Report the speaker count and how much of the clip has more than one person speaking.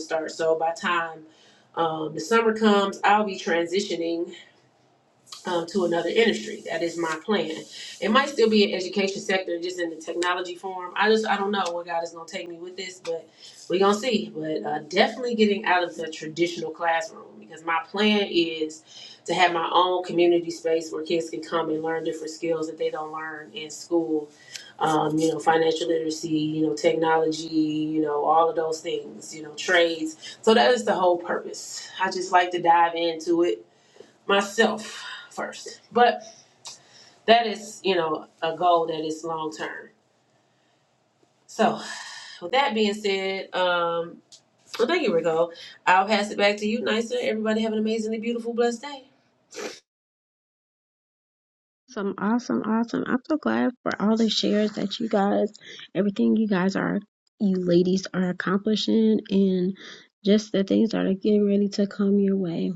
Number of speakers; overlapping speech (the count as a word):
two, no overlap